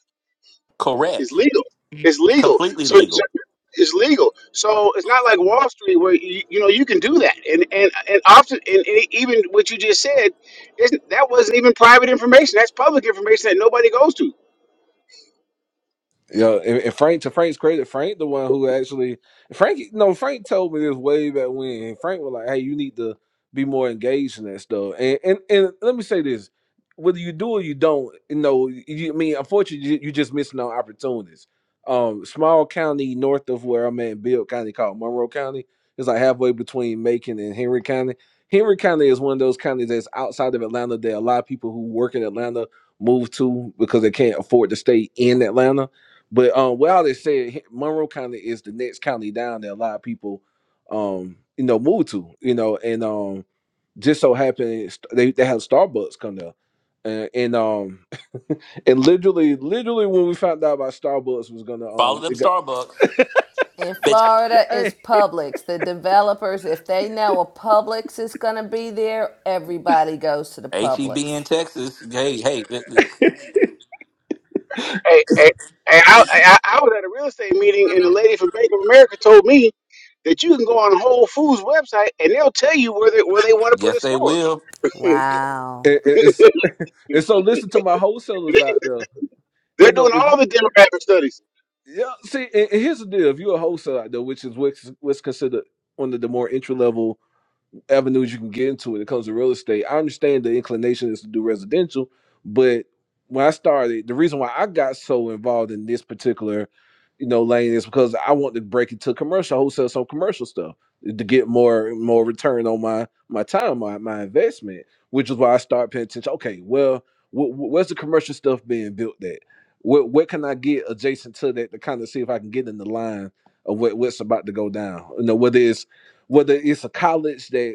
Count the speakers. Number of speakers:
4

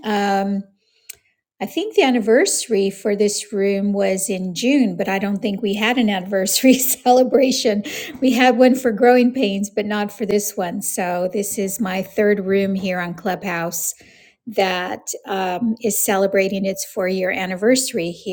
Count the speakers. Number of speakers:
1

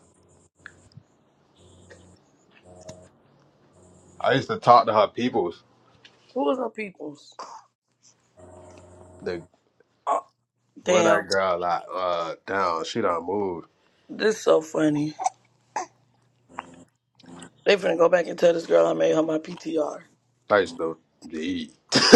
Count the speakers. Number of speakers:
2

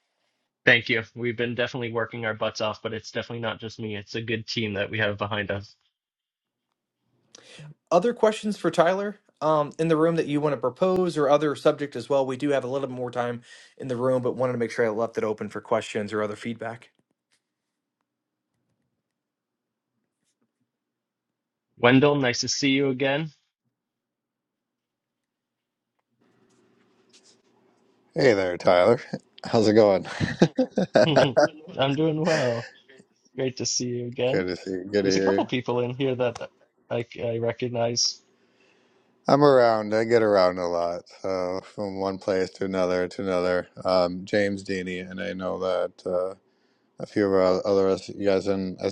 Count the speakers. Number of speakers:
3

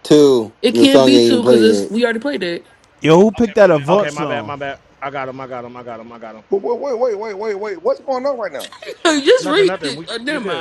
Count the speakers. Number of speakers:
5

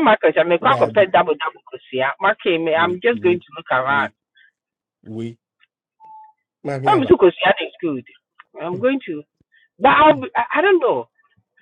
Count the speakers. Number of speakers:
2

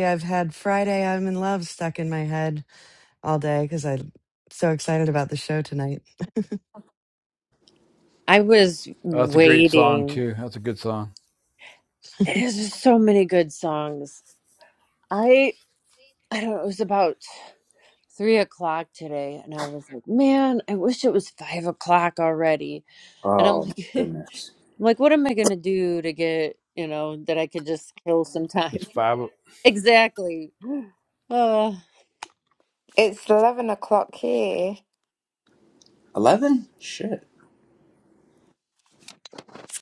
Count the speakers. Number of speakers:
5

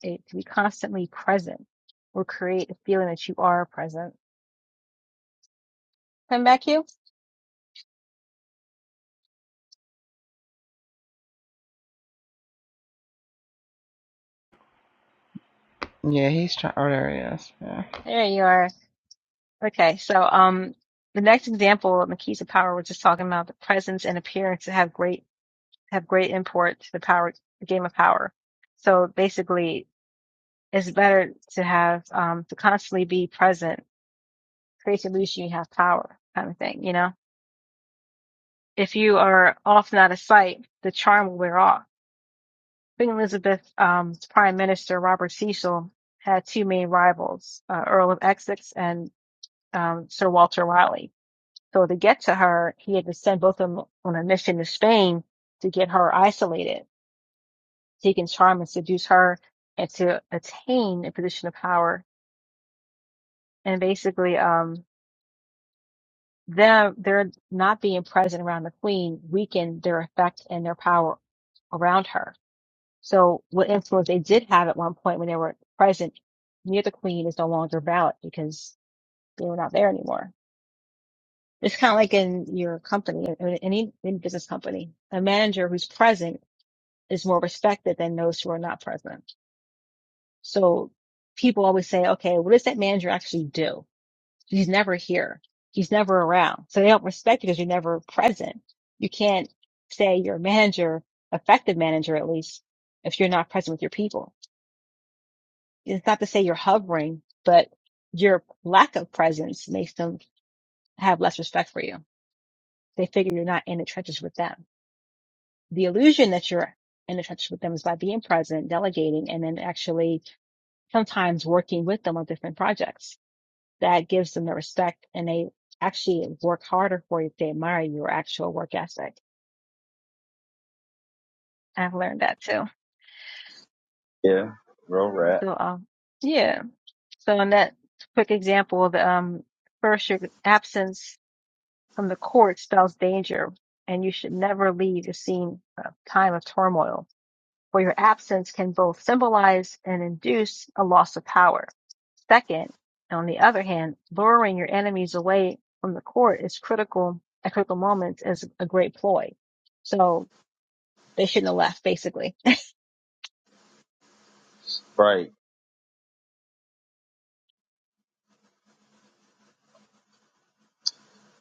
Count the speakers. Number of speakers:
3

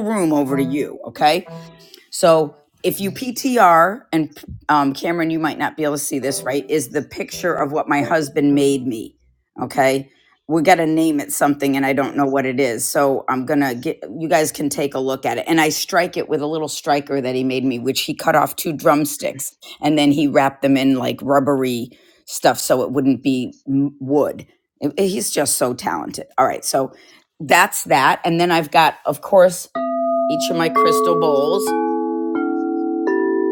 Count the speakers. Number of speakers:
1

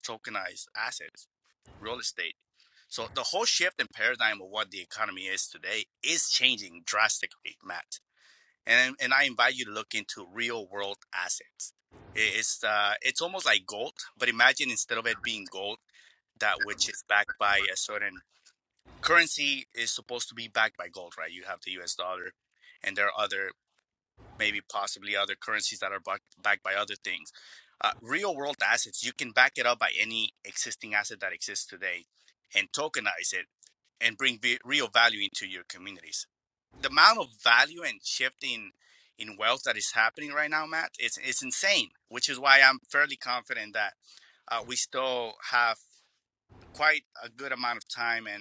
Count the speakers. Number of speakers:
1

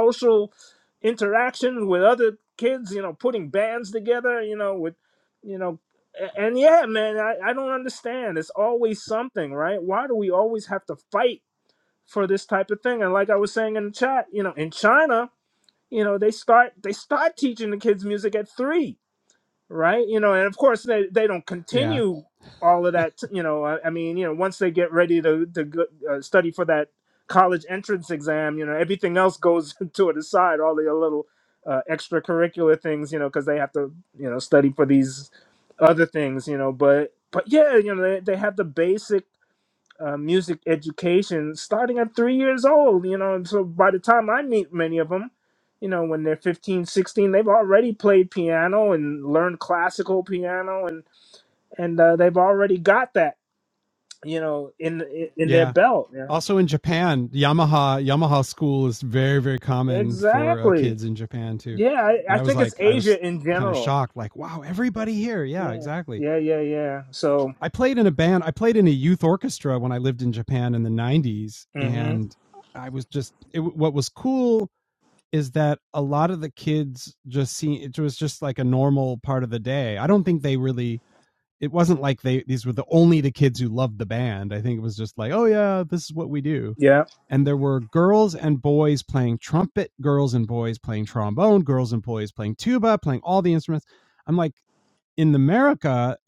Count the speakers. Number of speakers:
2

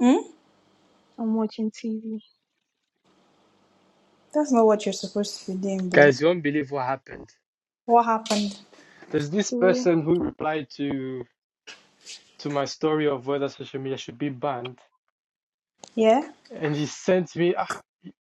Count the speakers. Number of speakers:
3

